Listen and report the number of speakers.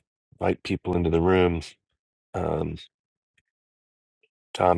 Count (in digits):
1